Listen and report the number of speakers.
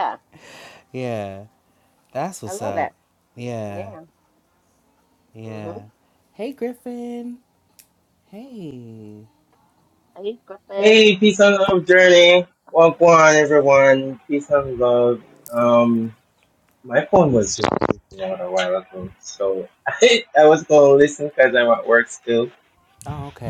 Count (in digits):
3